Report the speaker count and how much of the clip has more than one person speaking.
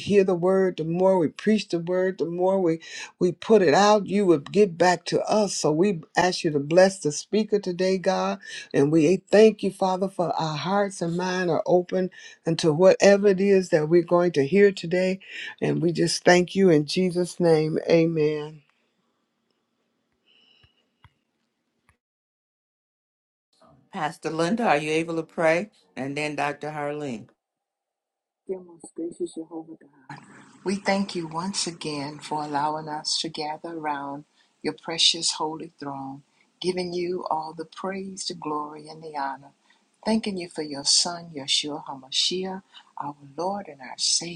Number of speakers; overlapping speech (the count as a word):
three, no overlap